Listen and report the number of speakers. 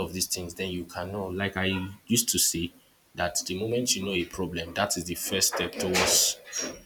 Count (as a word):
one